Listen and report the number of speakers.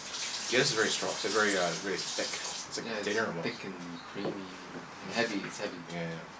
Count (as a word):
two